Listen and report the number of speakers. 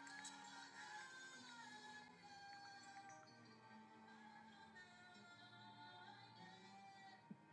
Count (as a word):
zero